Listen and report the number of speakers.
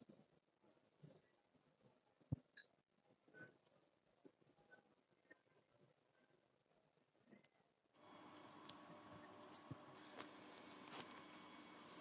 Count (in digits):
0